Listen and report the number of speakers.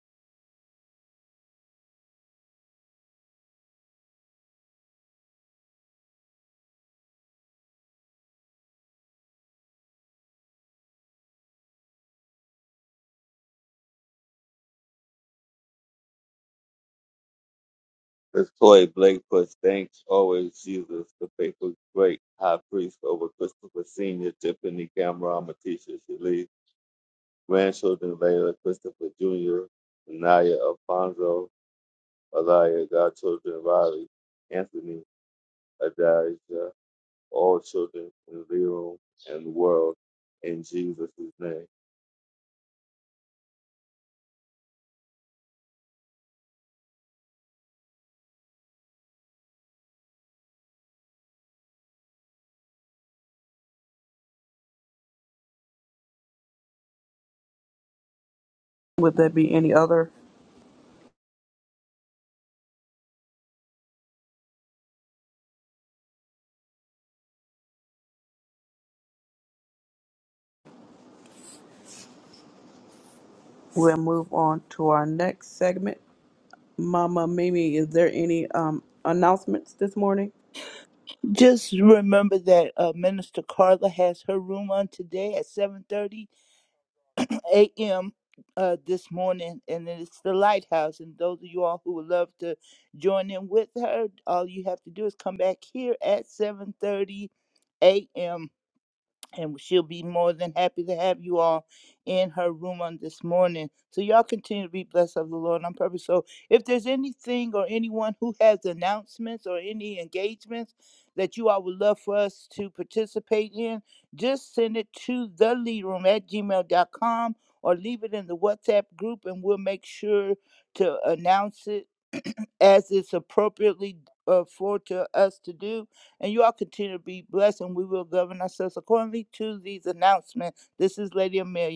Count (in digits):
3